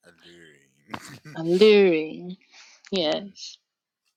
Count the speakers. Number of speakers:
two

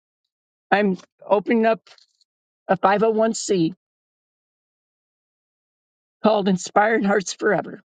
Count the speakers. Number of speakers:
one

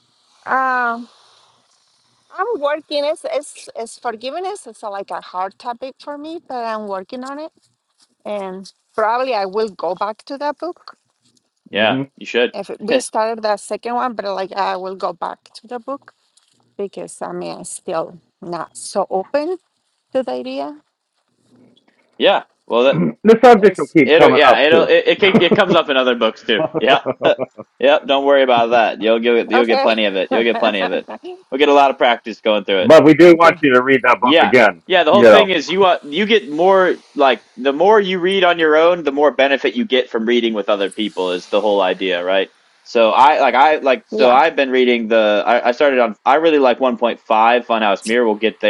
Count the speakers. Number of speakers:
three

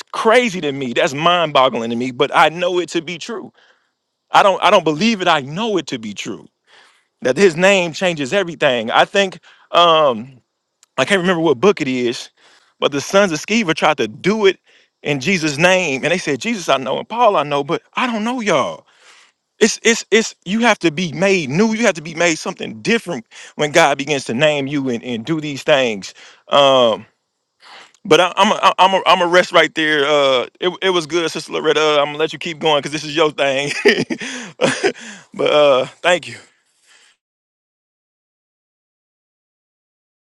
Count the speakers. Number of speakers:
one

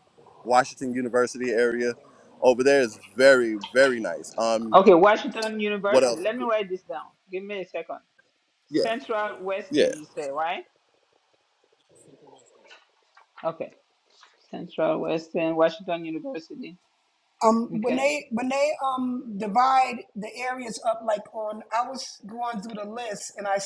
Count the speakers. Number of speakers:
three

